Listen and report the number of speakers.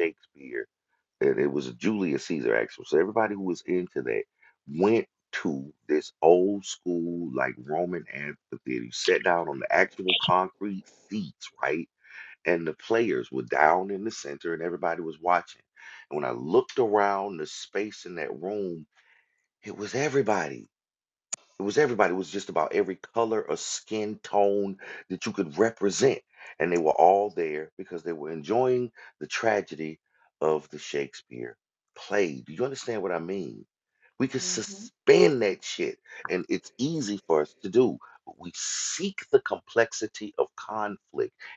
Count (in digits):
1